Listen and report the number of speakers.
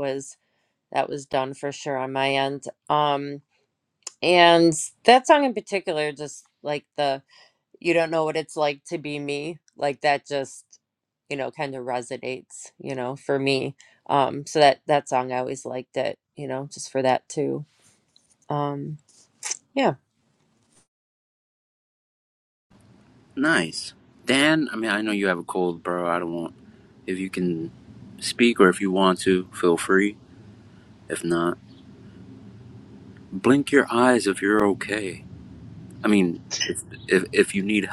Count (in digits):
2